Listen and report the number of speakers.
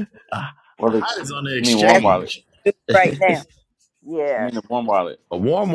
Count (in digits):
3